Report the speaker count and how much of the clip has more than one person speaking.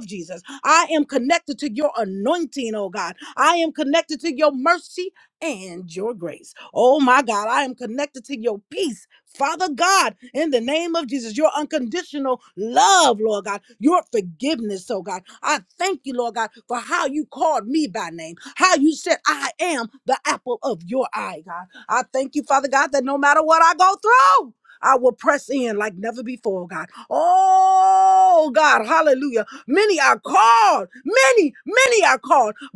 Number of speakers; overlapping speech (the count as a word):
one, no overlap